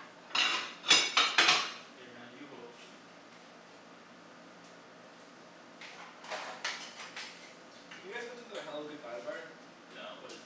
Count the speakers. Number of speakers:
2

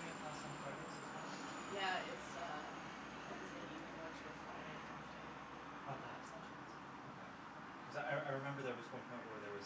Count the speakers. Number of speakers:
2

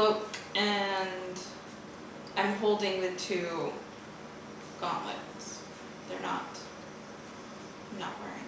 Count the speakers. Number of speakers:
1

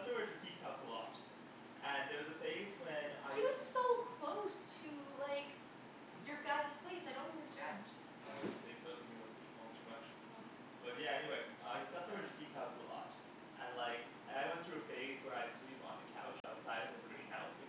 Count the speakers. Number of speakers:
2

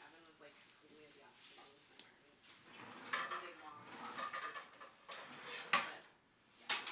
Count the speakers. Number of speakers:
1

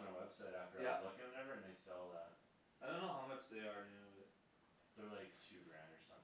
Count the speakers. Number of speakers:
2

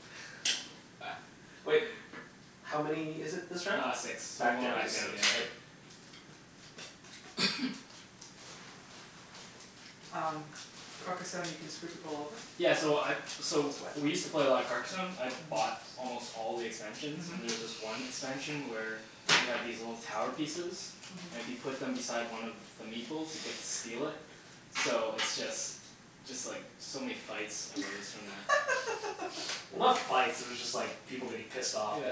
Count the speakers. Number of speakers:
3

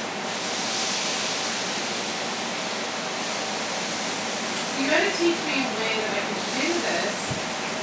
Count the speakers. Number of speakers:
1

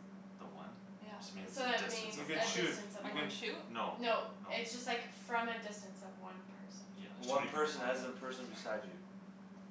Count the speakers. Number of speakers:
4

